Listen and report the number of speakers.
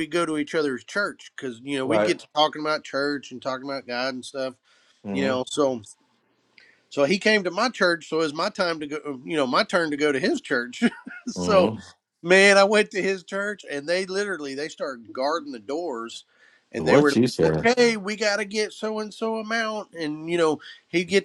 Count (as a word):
two